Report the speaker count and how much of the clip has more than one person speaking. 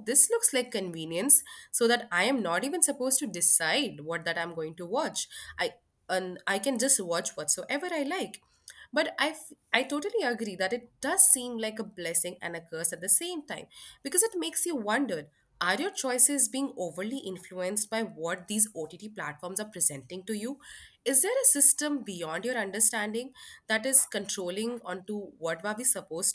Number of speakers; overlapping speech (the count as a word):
one, no overlap